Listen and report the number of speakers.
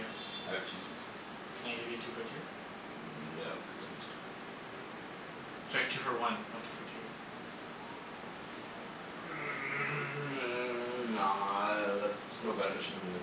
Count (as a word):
two